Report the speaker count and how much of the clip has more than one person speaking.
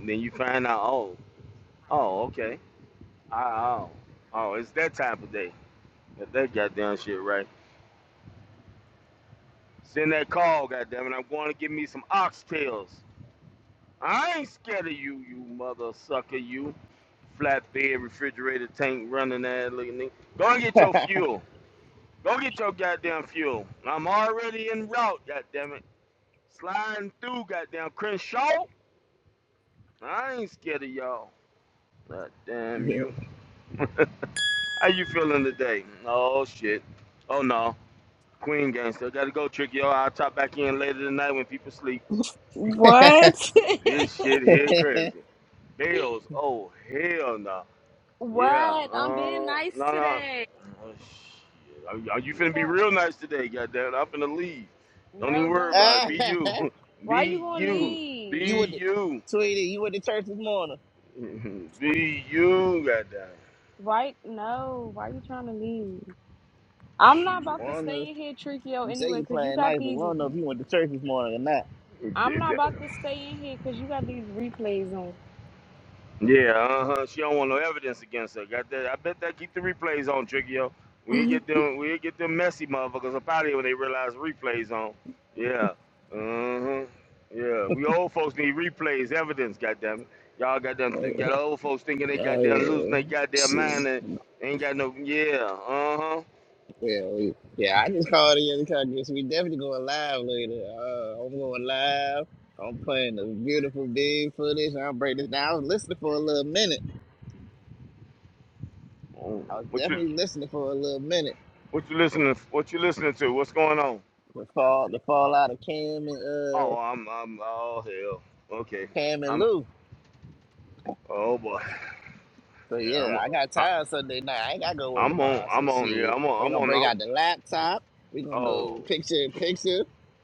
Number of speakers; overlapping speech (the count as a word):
three, about 10%